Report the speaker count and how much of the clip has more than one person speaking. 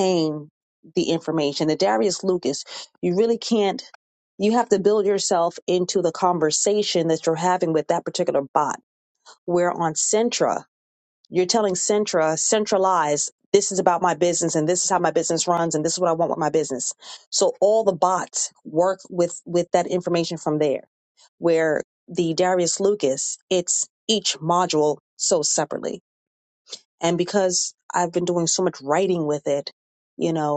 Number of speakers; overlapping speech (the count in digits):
1, no overlap